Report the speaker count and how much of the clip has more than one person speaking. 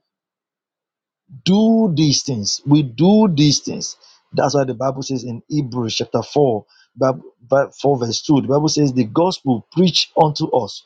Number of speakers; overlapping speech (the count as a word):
one, no overlap